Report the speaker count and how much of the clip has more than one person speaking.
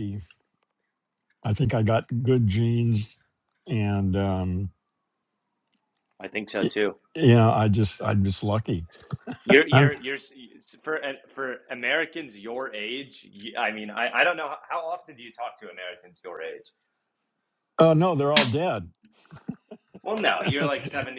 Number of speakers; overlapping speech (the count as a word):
two, about 2%